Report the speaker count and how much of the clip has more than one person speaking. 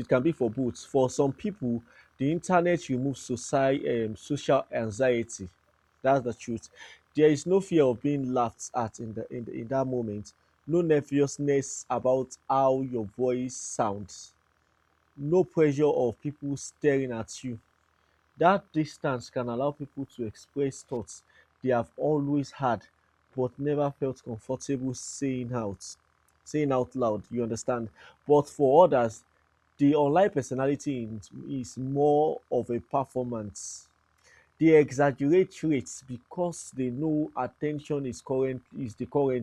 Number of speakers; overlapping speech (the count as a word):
one, no overlap